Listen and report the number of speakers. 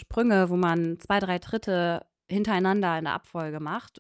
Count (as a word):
one